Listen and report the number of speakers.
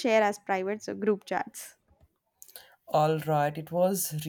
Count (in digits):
2